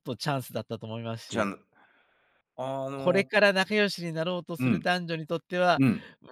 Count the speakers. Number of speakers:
two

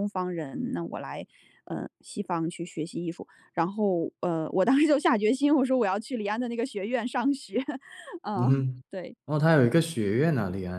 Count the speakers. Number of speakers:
two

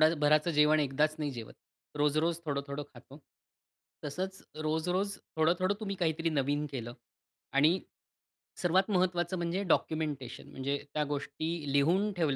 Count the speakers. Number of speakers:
one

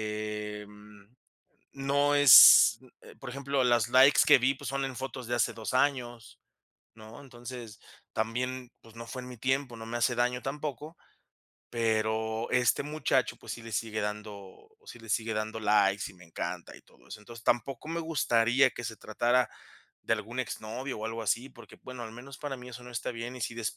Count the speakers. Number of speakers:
one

